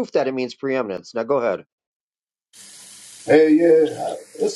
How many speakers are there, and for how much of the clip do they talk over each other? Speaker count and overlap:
2, no overlap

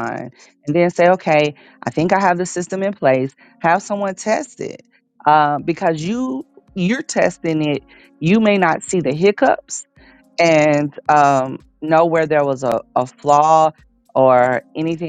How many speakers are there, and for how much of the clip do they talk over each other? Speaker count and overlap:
1, no overlap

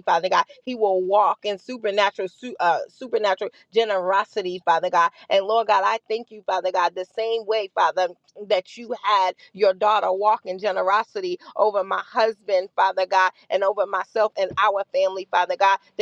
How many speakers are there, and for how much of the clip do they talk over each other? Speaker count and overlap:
1, no overlap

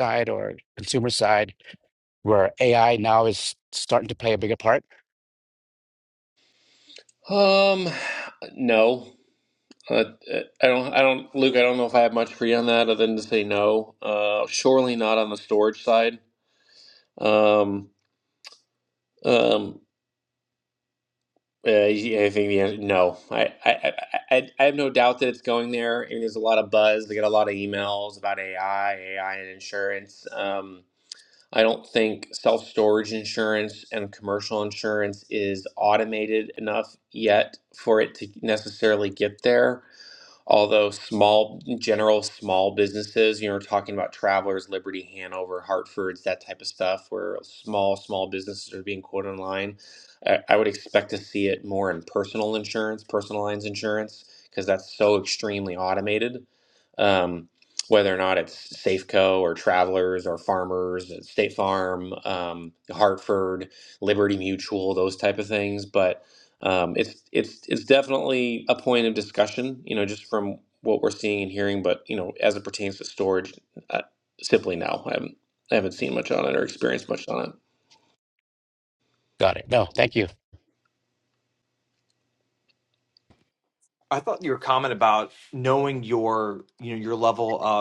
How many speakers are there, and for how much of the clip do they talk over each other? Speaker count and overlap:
3, no overlap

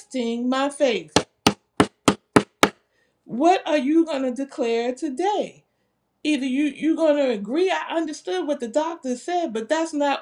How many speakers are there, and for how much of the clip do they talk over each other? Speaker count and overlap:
1, no overlap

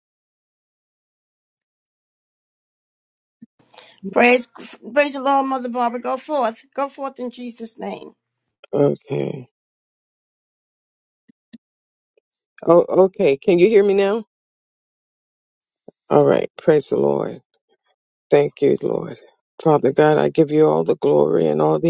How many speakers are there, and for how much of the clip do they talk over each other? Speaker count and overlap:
2, no overlap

